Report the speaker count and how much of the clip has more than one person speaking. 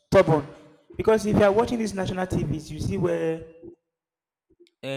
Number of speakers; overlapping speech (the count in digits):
1, no overlap